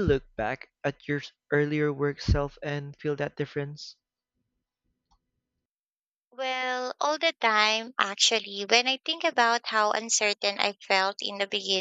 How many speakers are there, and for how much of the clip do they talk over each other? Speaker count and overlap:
two, no overlap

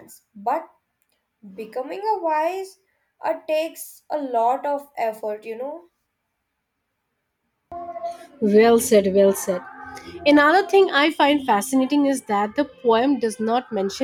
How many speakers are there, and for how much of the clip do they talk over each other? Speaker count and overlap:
two, no overlap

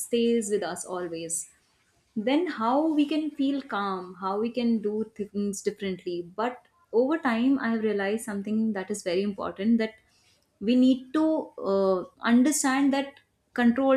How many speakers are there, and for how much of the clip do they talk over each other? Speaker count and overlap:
one, no overlap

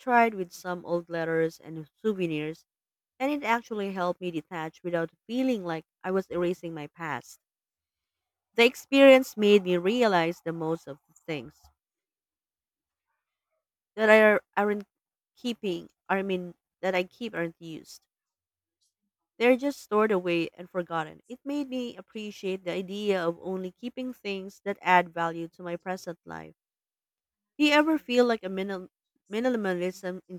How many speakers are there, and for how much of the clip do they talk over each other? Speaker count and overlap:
one, no overlap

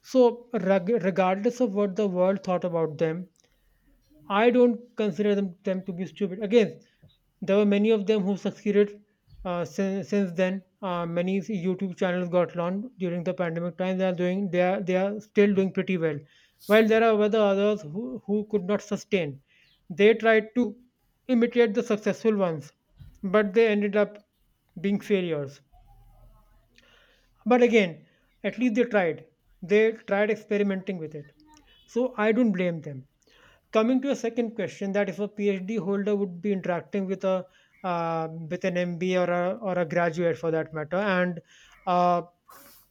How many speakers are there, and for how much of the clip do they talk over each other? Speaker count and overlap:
one, no overlap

